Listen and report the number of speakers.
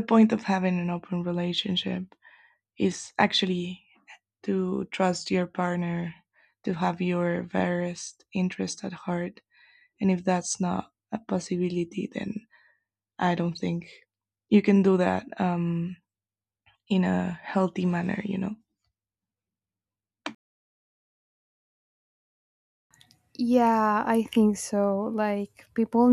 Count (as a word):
two